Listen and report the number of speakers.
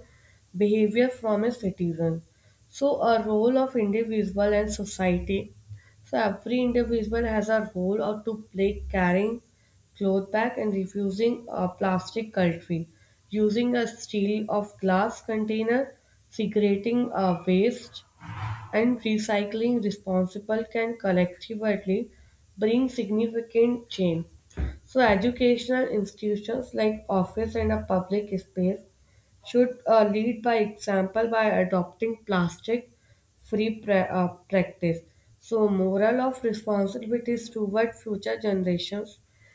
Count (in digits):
1